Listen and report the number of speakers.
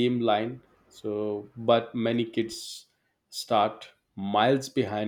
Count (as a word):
one